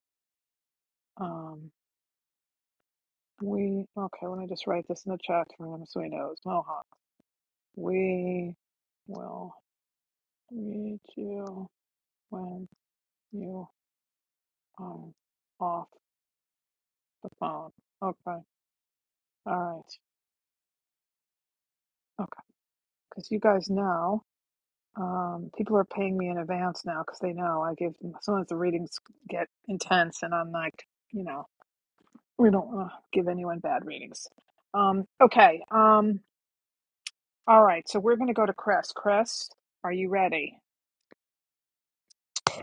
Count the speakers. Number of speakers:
1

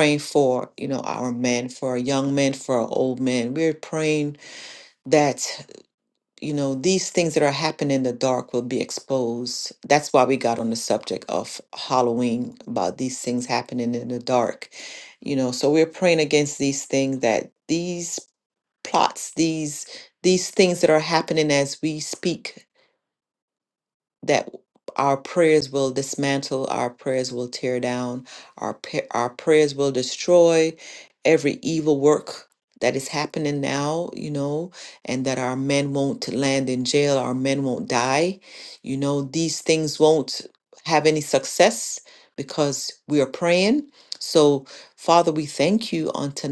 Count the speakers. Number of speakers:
1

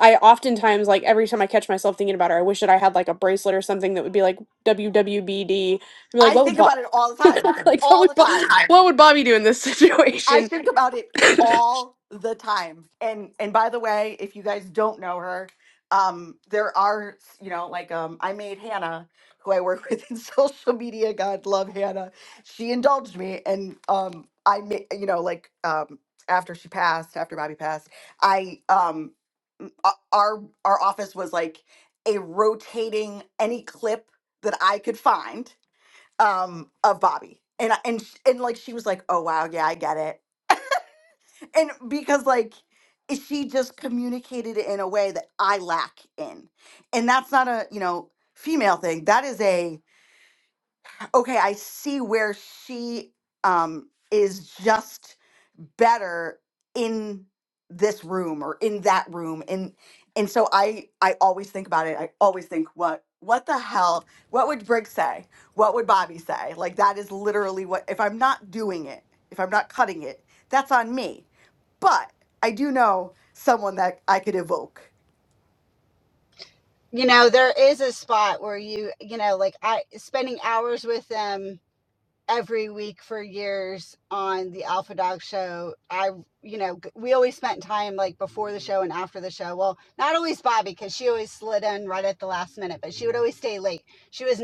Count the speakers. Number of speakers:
3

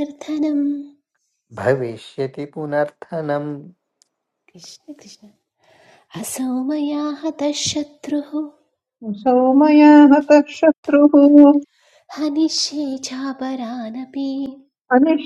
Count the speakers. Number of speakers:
3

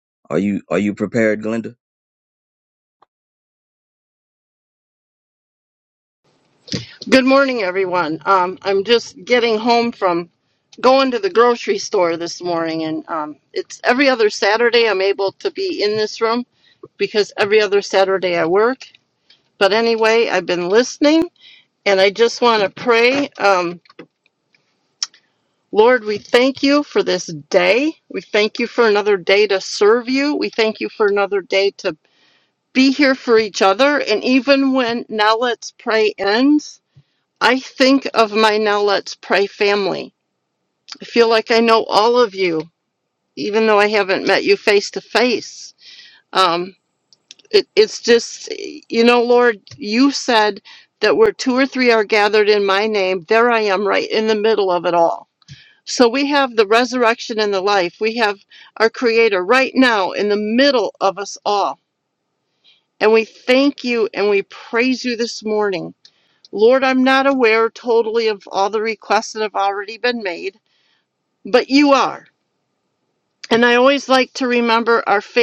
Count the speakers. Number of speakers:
2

